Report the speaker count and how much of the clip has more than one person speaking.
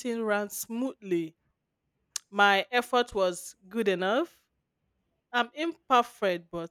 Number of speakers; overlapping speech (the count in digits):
1, no overlap